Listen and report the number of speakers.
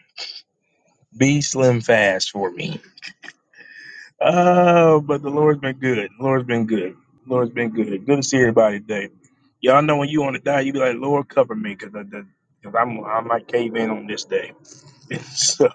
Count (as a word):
one